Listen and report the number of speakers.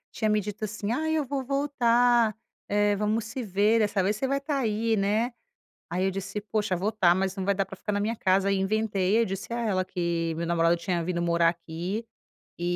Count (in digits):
1